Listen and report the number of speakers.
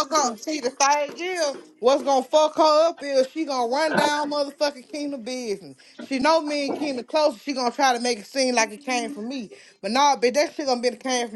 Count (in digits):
1